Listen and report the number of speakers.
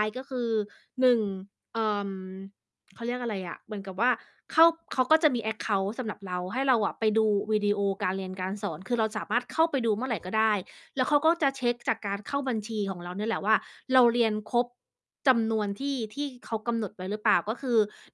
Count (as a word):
one